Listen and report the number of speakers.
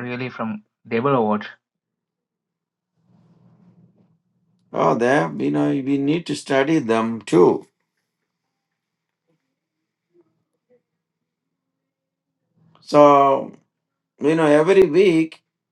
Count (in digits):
2